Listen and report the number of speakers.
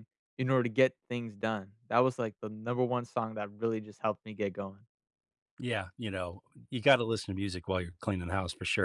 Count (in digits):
2